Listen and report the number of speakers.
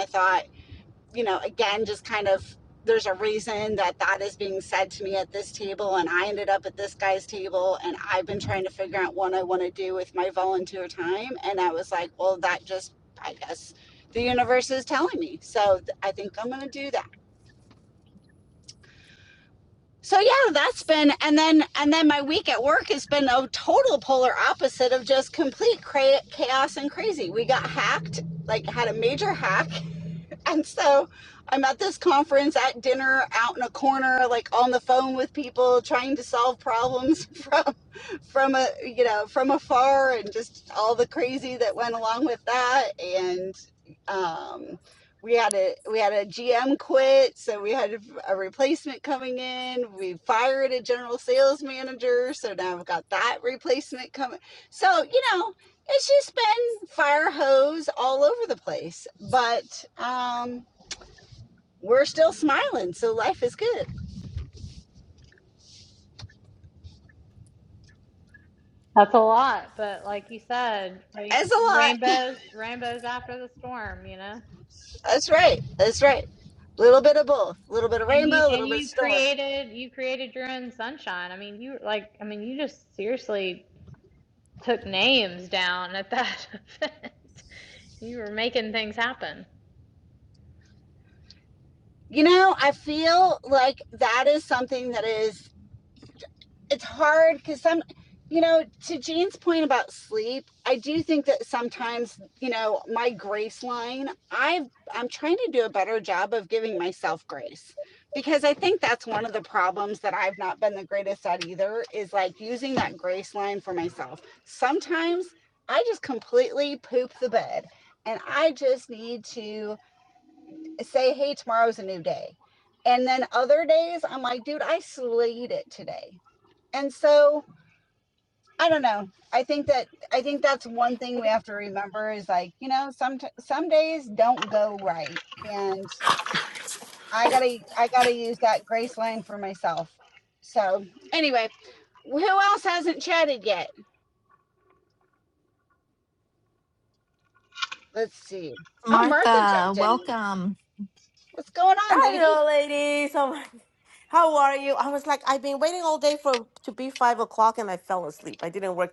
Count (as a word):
four